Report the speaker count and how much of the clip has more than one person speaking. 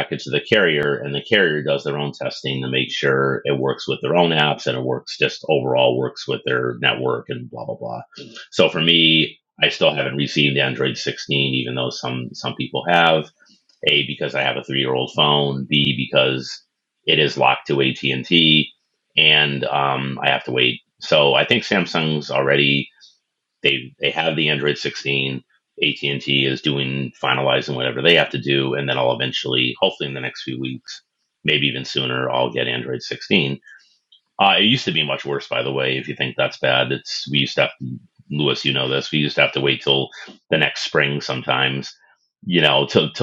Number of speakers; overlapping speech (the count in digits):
1, no overlap